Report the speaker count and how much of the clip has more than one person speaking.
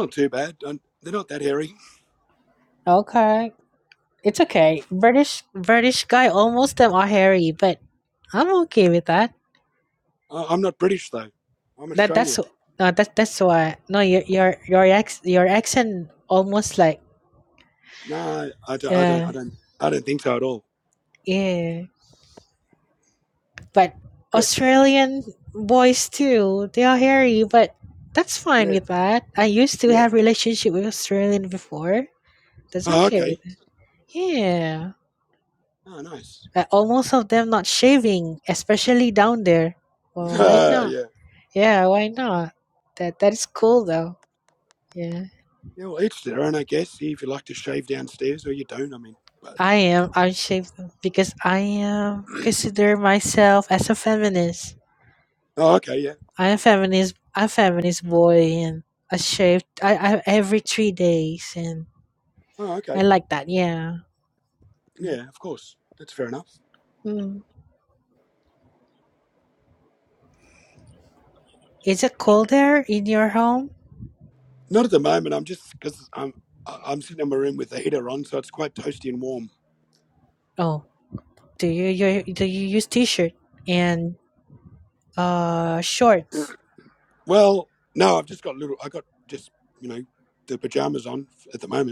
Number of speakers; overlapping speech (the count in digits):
2, about 3%